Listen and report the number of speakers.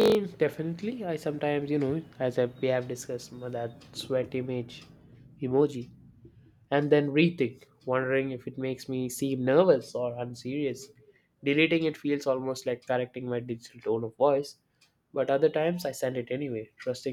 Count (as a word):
one